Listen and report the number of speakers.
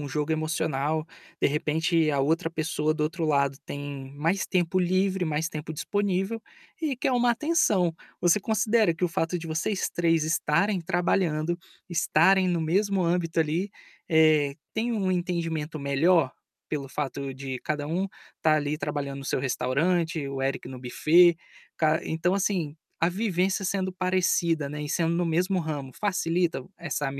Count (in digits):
1